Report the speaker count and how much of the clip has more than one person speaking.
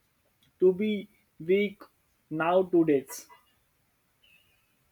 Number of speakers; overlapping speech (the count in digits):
1, no overlap